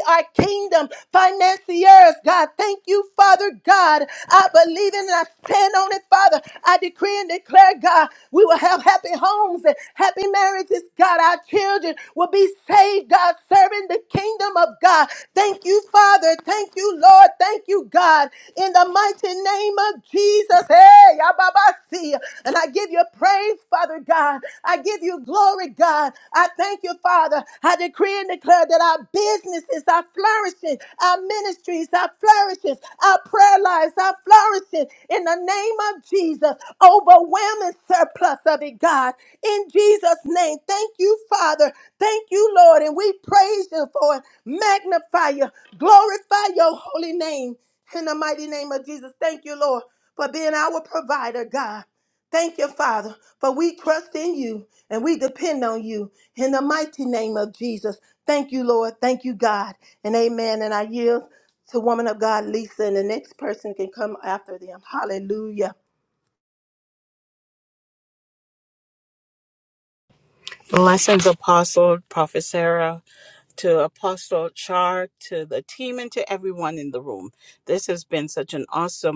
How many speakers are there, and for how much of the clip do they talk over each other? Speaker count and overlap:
2, no overlap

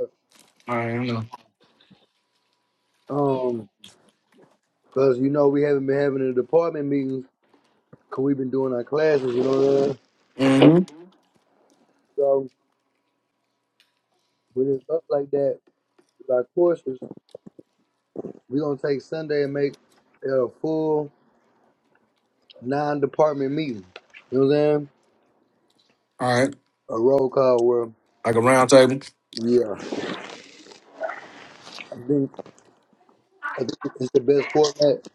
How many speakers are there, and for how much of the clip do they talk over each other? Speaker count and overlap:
2, no overlap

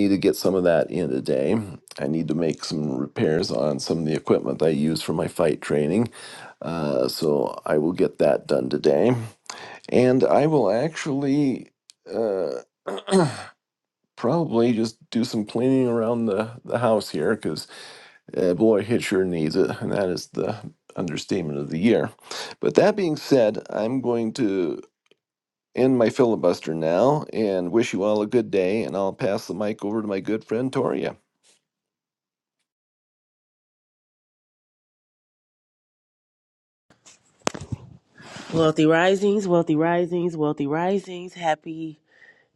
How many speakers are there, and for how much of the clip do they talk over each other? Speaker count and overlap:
2, no overlap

